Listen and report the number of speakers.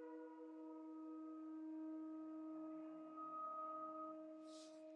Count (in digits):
0